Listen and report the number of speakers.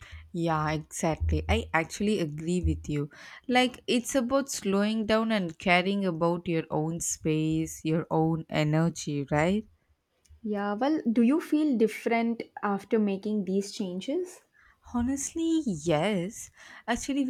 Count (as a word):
two